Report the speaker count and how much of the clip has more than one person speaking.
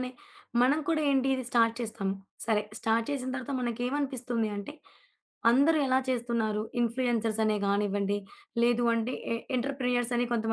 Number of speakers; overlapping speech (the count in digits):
1, no overlap